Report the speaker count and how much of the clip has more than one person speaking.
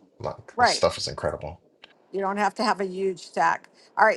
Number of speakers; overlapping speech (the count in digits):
2, about 6%